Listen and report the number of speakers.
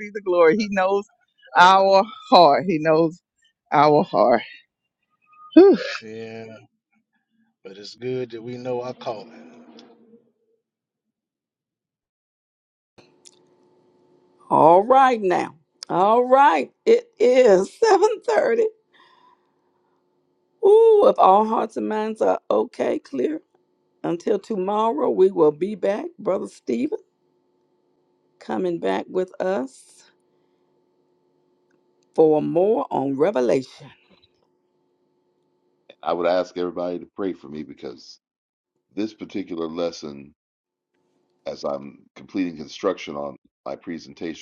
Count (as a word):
four